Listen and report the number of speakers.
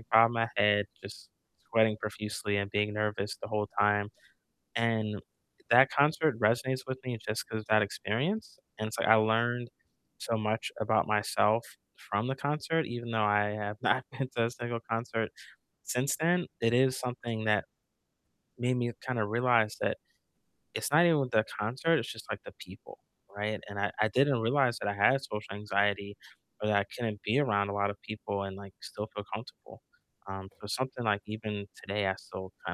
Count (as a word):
one